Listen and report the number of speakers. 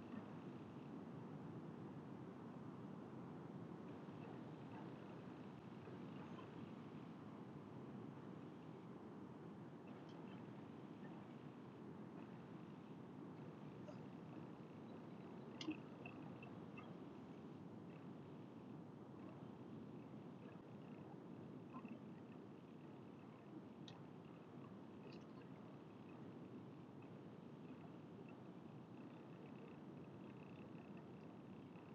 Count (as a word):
zero